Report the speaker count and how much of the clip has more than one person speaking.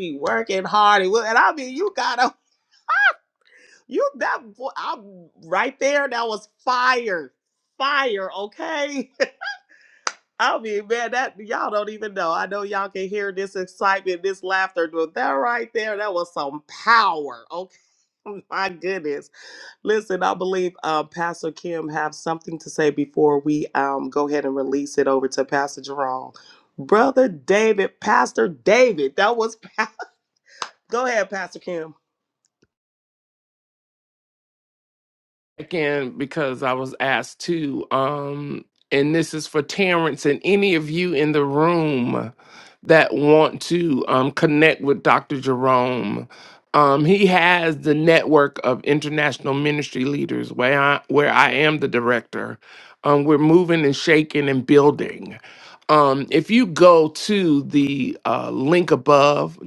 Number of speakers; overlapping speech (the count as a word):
two, no overlap